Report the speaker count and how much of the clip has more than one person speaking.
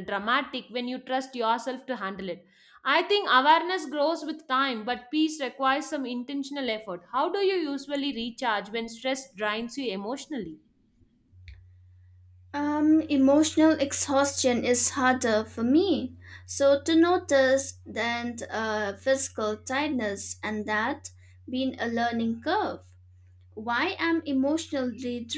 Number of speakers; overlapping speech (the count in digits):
2, no overlap